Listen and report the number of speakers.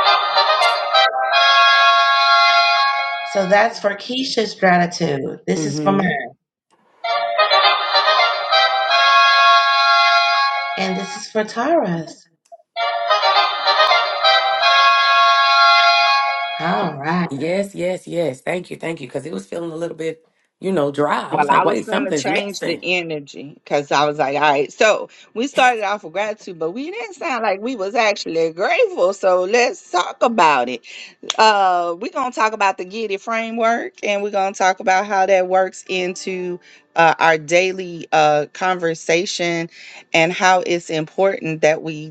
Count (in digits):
3